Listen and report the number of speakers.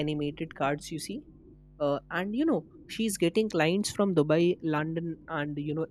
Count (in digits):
1